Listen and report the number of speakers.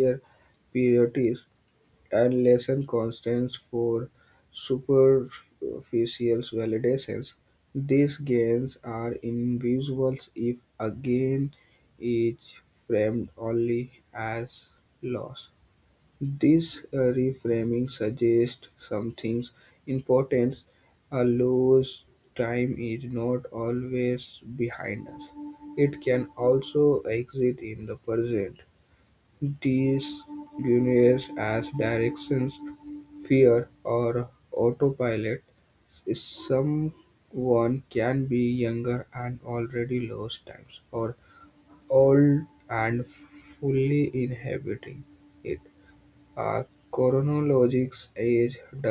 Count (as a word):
one